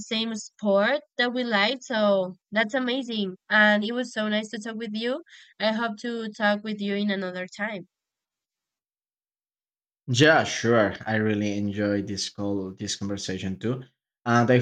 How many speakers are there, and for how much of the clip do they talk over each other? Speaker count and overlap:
two, no overlap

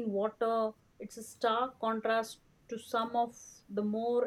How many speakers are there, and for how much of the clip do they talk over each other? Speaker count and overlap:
one, no overlap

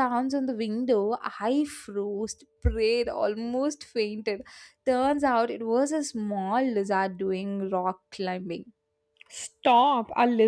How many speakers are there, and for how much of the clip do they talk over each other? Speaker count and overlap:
two, no overlap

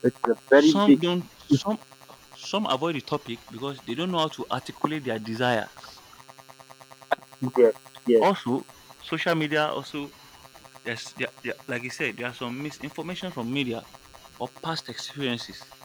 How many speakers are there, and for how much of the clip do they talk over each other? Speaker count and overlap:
two, about 3%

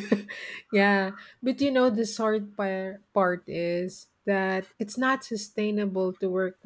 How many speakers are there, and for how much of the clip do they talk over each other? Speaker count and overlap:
one, no overlap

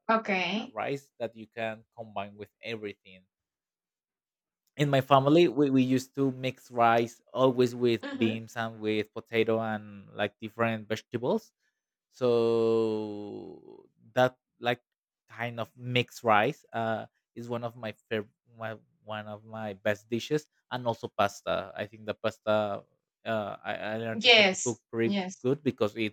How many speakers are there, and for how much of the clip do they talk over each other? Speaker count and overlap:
two, about 4%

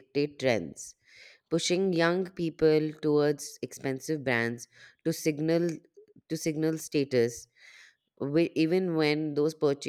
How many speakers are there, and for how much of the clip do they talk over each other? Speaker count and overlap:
one, no overlap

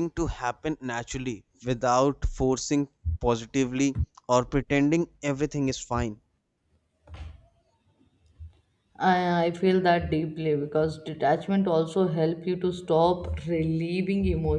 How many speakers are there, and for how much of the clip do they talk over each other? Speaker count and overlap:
two, no overlap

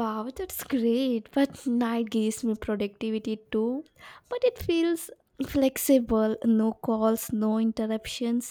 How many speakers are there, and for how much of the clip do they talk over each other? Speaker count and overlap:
one, no overlap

